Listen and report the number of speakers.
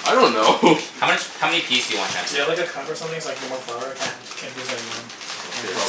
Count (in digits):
3